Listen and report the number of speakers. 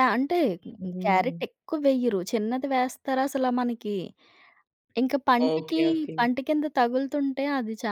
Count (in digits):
2